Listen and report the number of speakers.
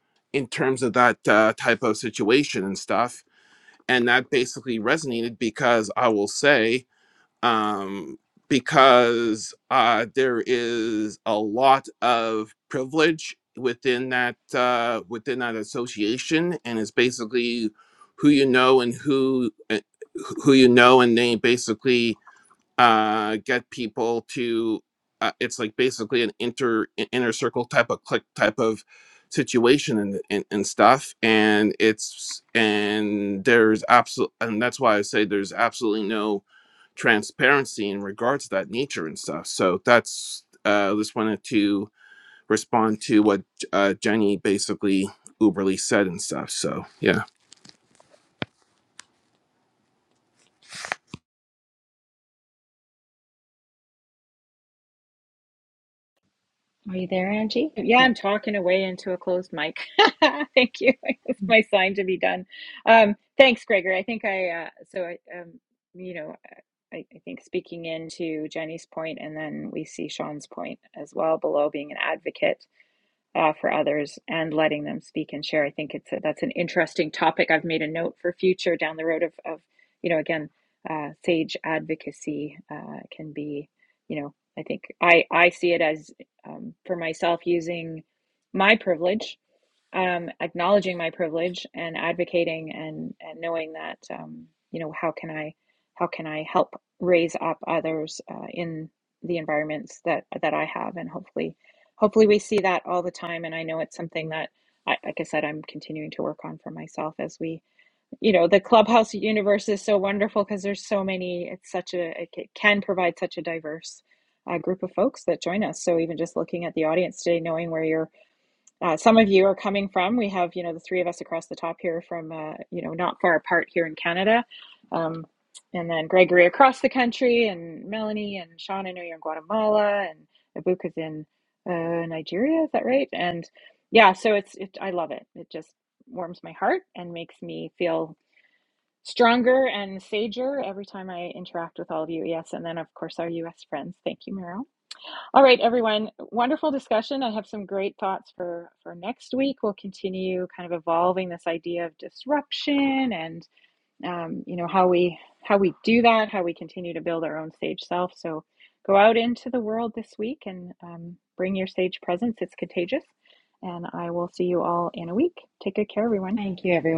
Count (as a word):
three